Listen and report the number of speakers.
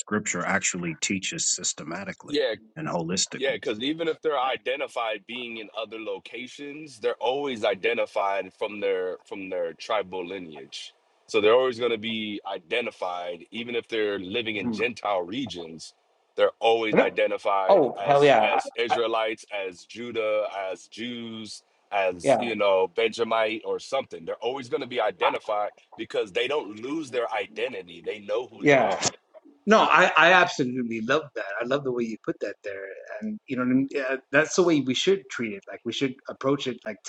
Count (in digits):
3